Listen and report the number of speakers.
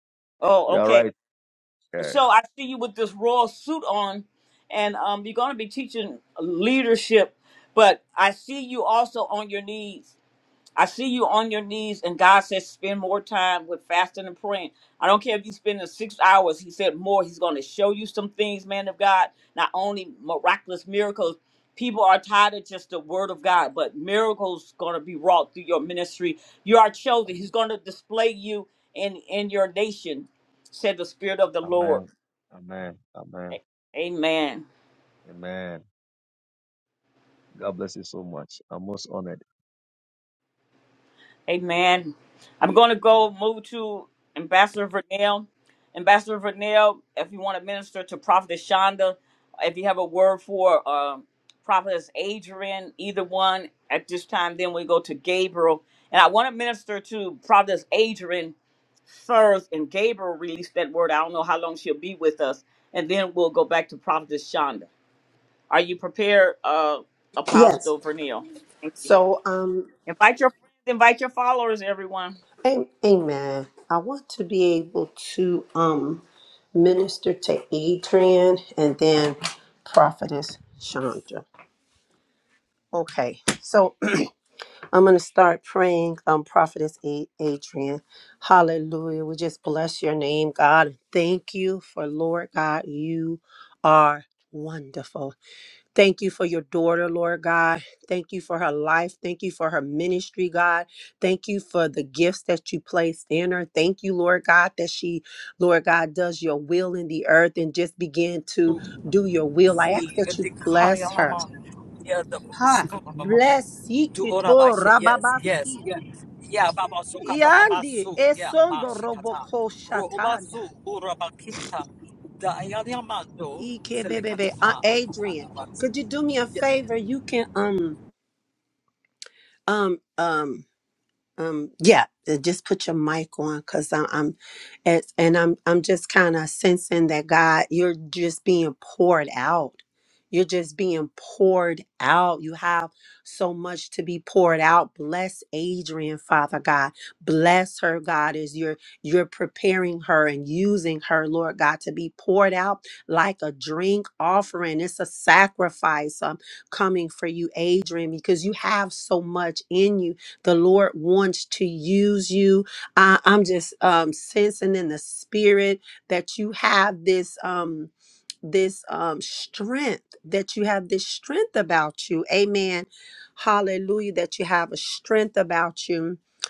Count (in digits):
4